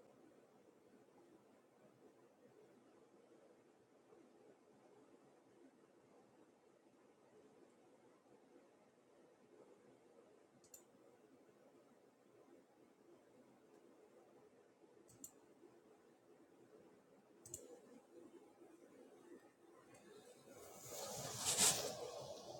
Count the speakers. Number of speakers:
0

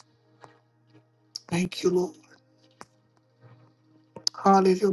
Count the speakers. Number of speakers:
1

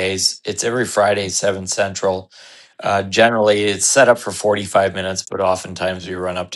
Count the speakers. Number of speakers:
1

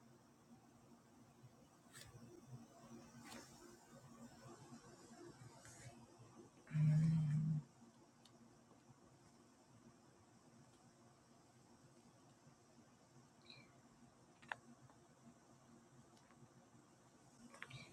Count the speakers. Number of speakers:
0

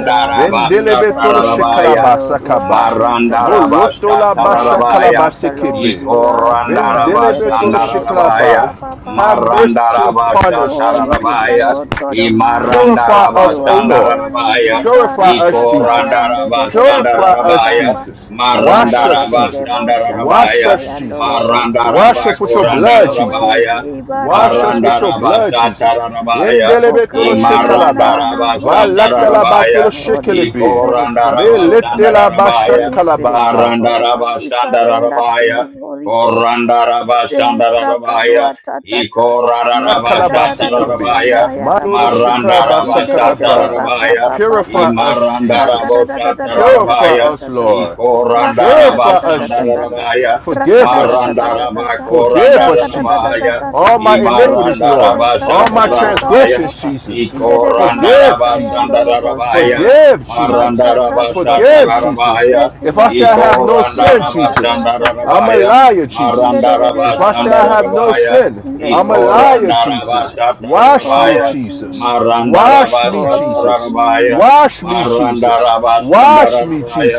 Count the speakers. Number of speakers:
3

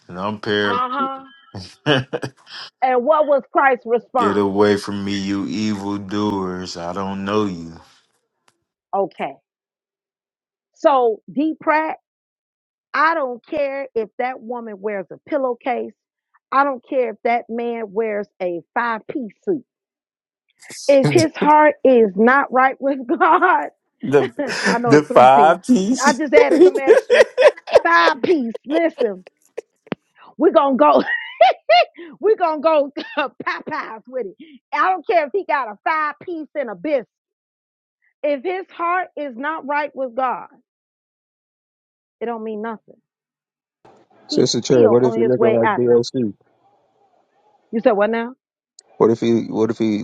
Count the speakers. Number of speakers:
3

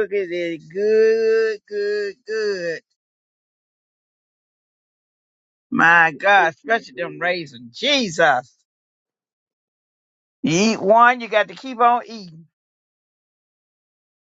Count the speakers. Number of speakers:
1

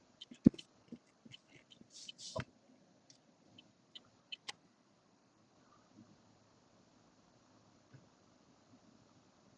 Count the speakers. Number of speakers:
0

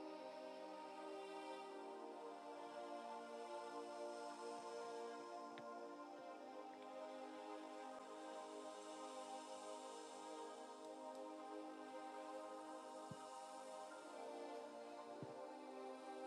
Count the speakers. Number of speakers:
0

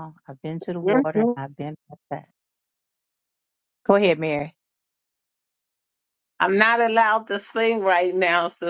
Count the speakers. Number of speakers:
2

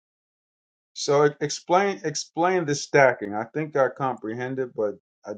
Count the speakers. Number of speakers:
1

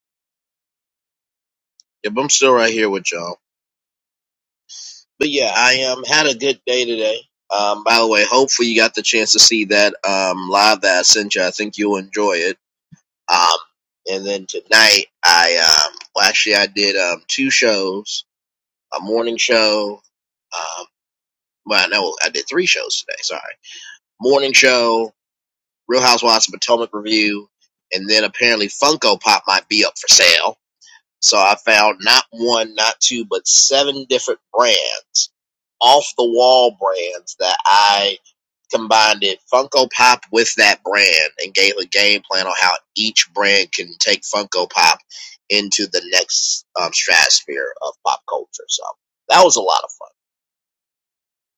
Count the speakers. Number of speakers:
1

